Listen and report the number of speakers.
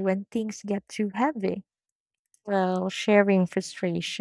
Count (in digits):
1